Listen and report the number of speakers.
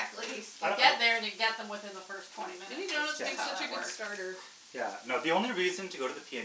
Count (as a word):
three